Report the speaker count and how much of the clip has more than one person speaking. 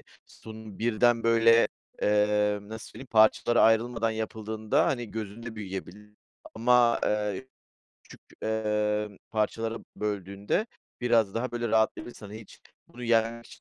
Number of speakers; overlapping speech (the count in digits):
1, no overlap